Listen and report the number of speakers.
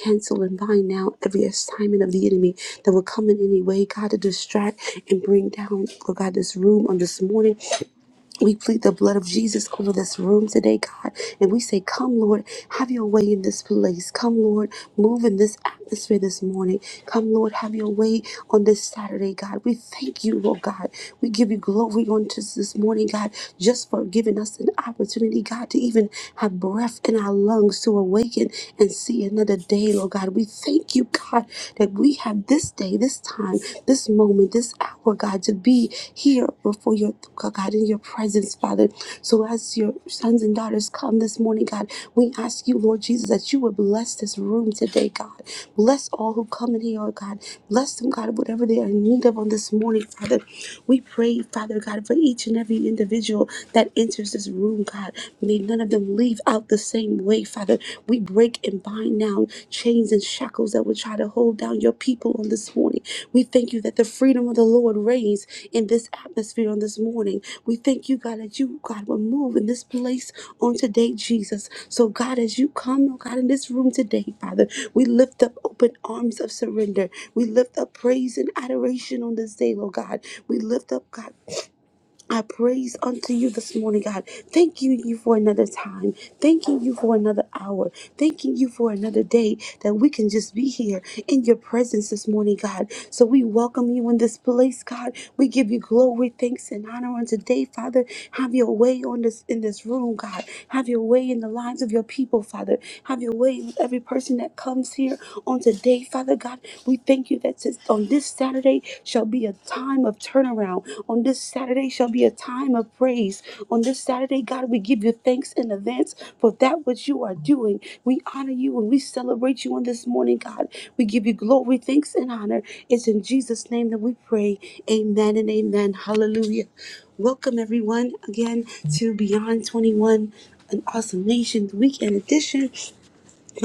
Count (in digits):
1